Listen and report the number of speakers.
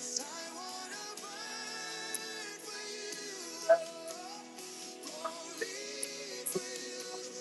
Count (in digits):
0